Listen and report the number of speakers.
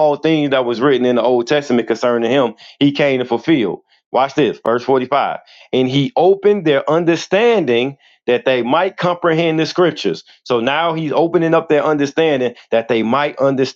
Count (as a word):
one